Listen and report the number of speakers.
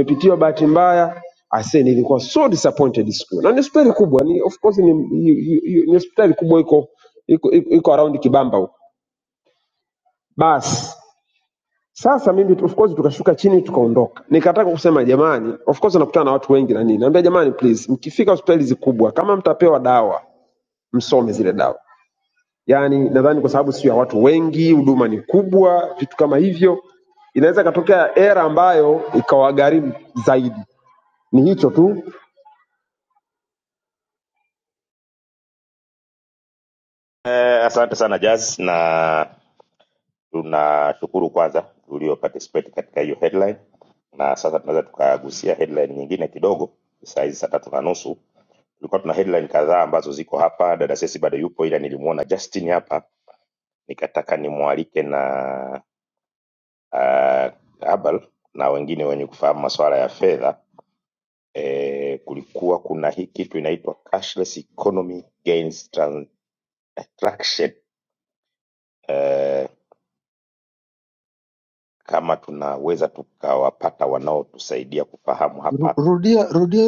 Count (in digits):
3